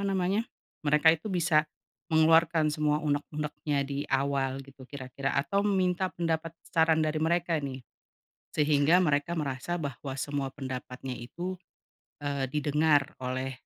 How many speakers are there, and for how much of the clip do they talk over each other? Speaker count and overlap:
one, no overlap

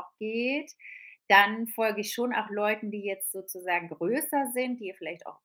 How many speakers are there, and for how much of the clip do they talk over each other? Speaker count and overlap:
one, no overlap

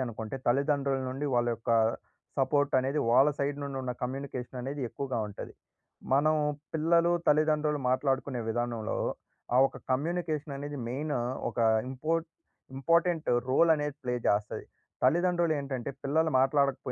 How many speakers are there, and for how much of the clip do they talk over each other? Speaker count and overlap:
one, no overlap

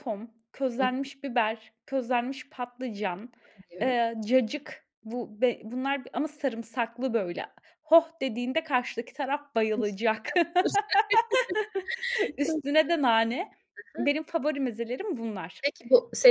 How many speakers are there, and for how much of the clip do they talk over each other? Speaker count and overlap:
two, about 2%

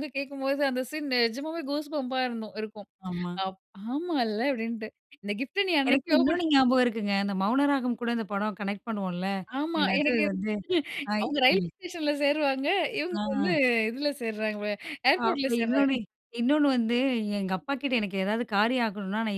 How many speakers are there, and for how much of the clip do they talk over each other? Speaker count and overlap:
two, about 14%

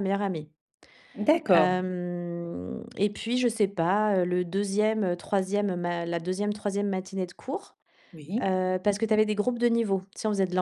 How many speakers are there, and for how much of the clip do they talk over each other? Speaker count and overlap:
two, about 5%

